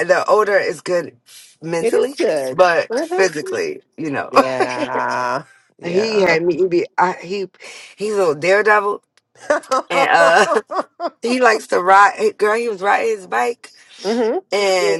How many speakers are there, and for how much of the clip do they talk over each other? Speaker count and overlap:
2, about 17%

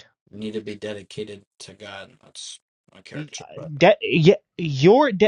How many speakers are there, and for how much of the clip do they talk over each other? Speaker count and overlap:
2, about 10%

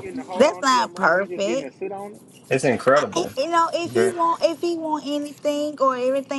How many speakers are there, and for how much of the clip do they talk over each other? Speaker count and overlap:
3, about 31%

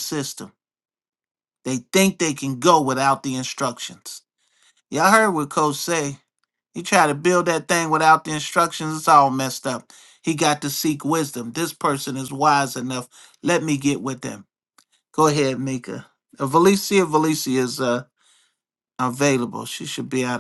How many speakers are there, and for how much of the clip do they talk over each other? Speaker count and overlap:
1, no overlap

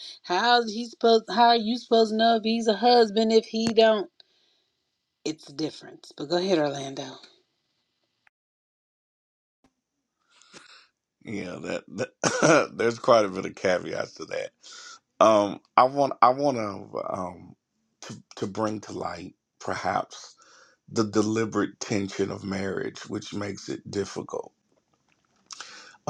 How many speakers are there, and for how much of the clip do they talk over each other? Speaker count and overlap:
2, no overlap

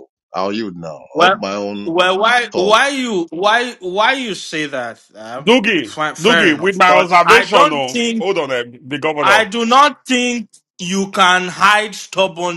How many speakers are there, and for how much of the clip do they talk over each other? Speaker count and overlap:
3, about 25%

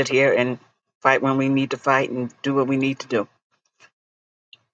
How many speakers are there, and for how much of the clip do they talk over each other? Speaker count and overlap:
1, no overlap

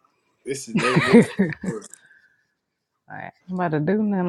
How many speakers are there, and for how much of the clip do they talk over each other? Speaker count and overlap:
2, about 6%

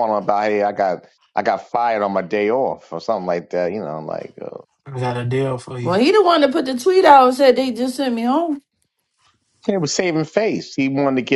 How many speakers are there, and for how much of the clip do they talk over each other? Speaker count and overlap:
3, about 1%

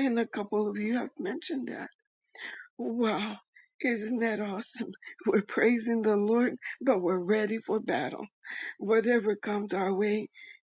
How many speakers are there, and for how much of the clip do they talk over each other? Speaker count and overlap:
1, no overlap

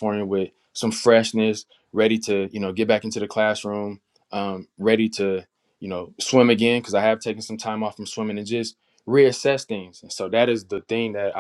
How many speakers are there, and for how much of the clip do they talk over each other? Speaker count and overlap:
1, no overlap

